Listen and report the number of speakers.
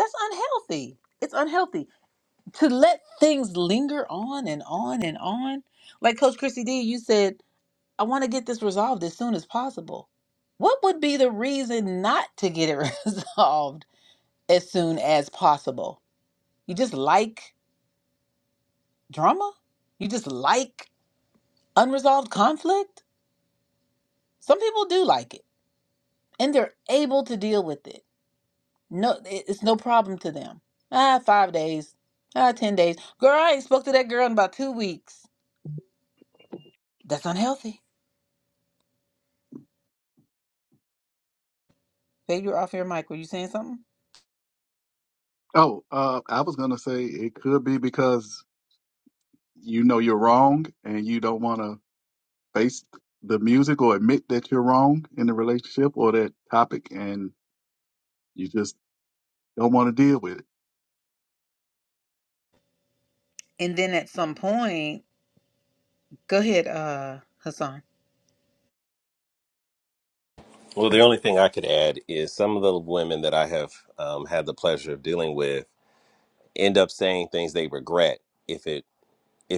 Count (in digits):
3